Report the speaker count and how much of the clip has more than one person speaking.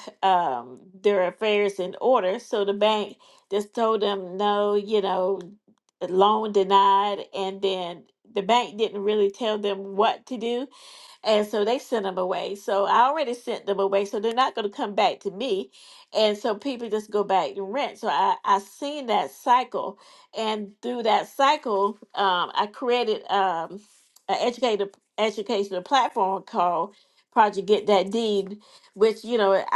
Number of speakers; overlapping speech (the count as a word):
one, no overlap